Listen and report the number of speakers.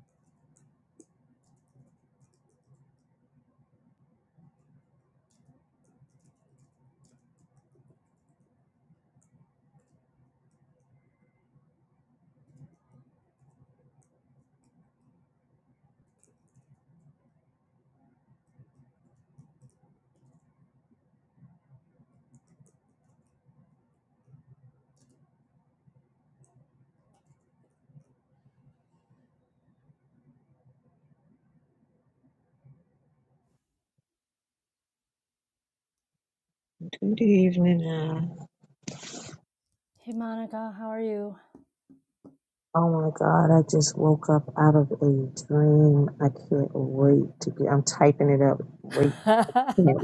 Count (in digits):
2